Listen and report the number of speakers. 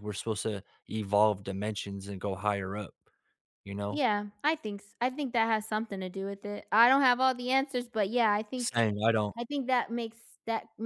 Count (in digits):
2